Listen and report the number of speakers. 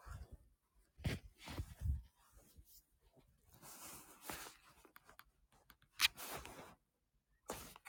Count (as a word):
zero